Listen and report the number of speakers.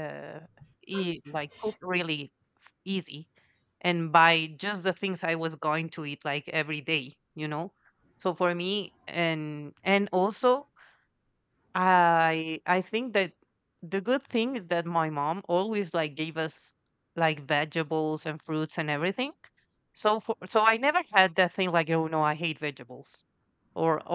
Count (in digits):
1